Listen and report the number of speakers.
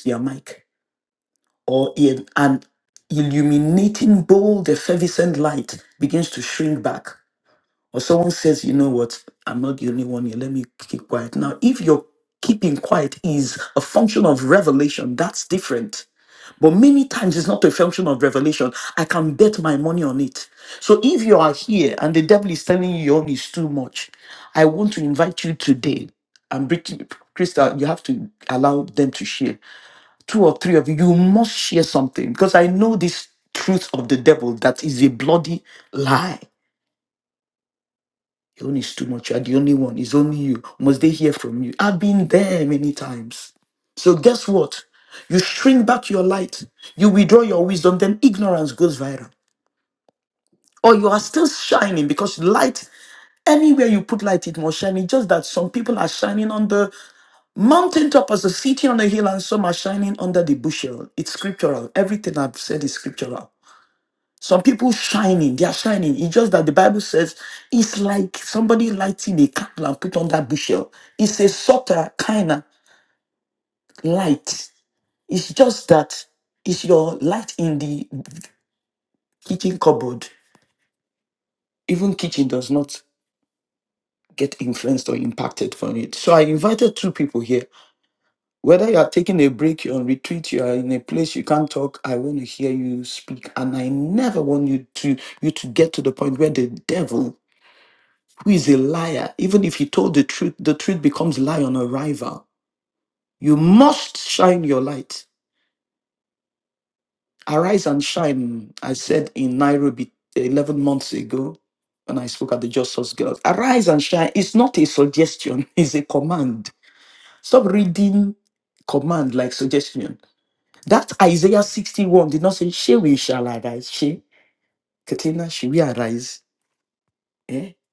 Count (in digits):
1